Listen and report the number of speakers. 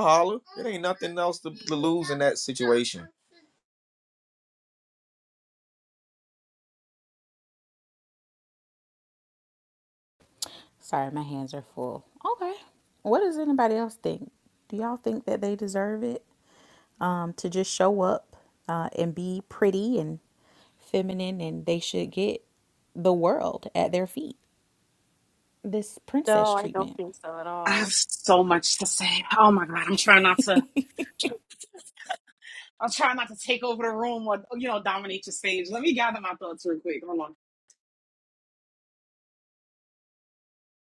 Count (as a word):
four